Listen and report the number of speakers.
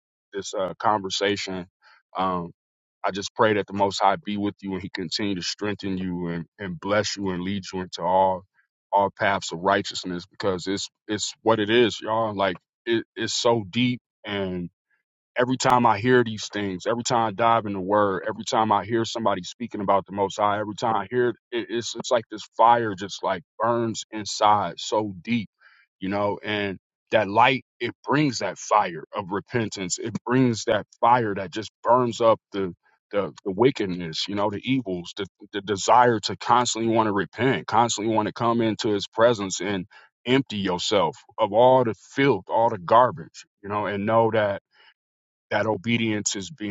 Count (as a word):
one